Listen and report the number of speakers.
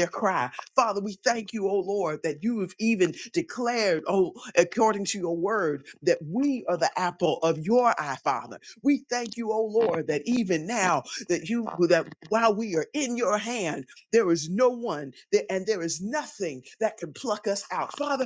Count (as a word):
one